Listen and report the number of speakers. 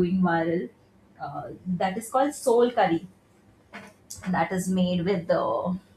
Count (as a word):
one